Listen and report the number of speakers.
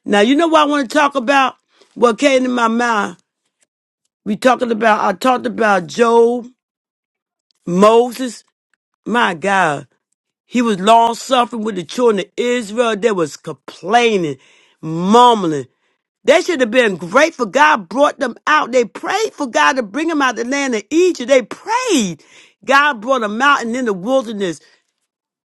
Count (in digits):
1